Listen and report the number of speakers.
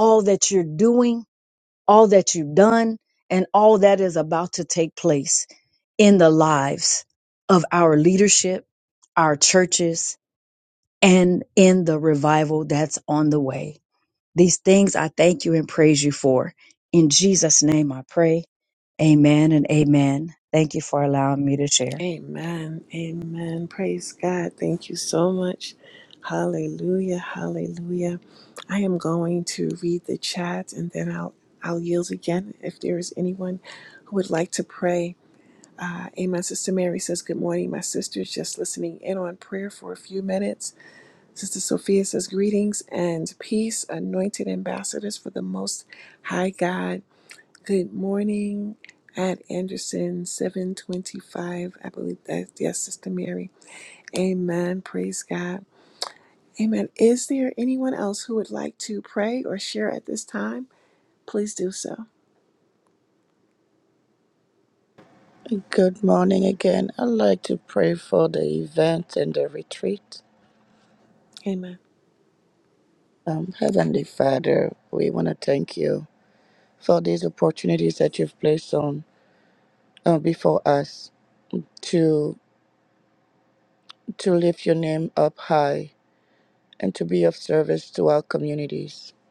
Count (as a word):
three